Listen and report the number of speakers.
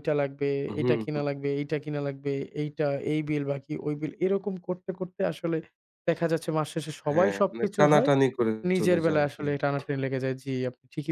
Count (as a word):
two